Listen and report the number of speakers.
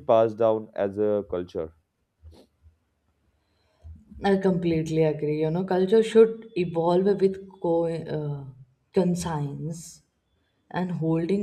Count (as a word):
two